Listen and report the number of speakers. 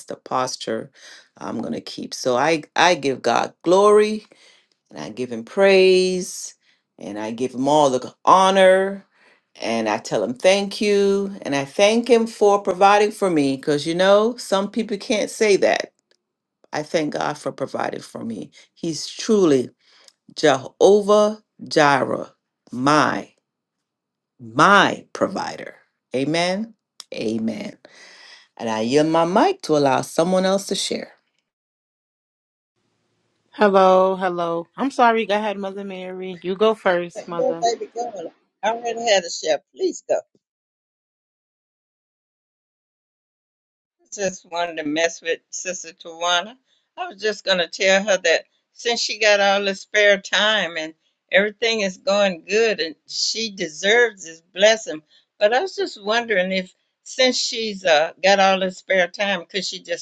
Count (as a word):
three